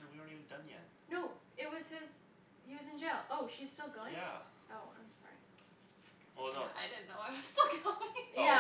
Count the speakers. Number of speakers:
3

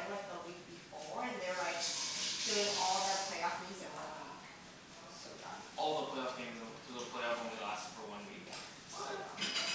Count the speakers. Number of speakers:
2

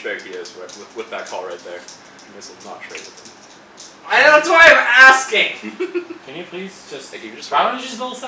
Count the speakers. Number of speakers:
3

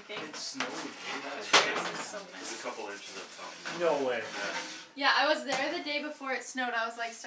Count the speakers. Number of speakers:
3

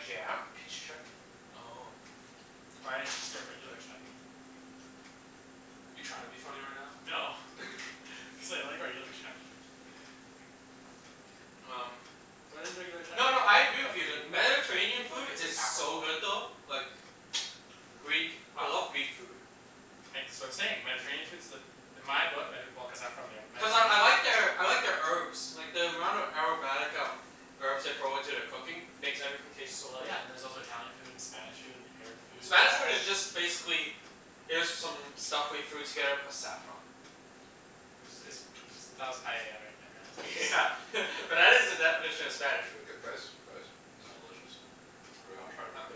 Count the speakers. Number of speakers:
3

